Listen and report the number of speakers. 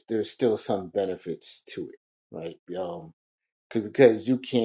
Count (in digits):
1